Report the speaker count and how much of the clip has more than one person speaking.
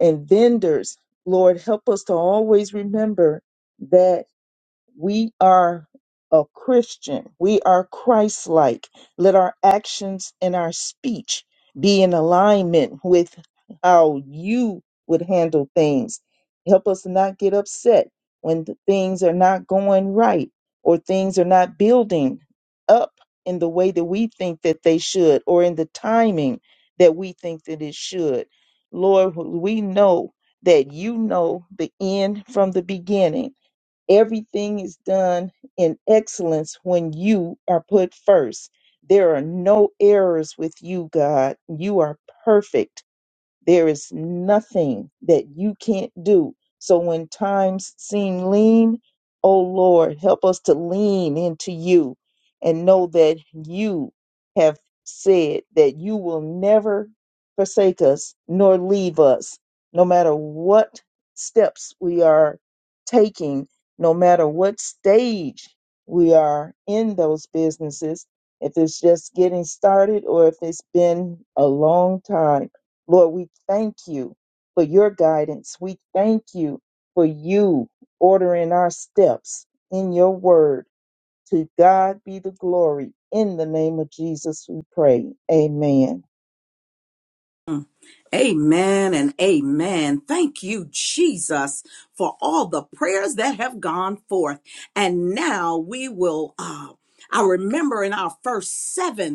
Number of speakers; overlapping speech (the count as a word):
two, no overlap